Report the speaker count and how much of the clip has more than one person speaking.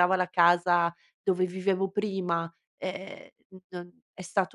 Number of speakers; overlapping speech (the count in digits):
1, no overlap